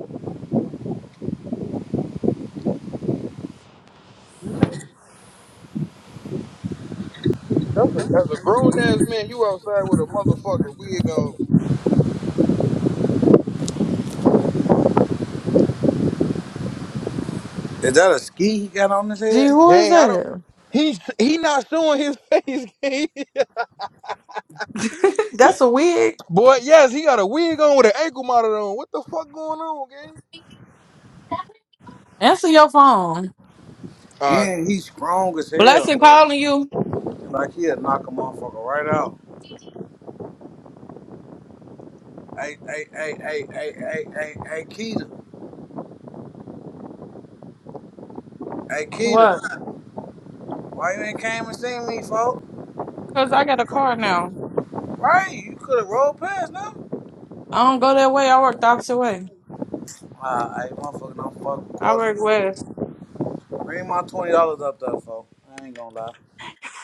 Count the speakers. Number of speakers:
3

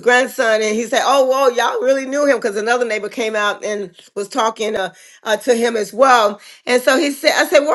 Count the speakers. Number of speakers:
1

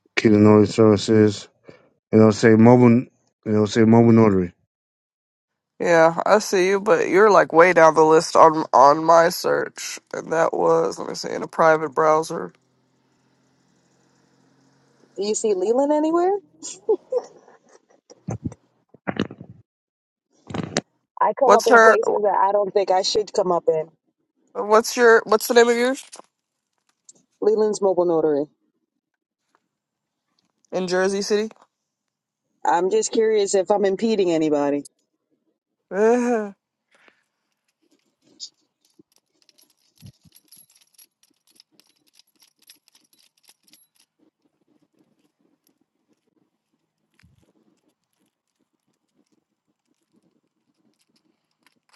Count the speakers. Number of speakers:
3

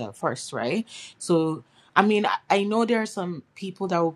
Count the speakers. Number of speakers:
1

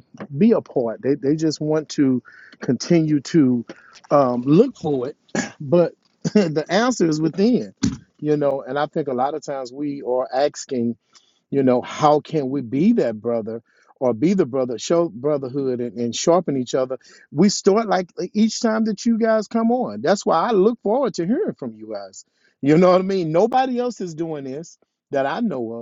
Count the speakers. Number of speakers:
1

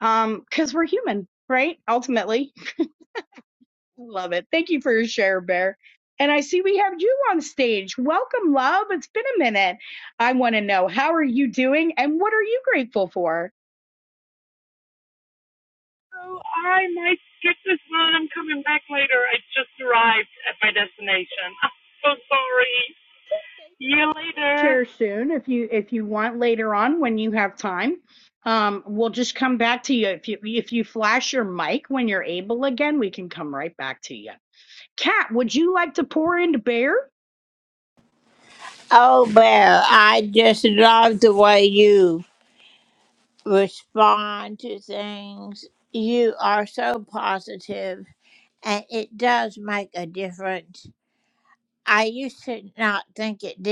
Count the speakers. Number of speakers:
3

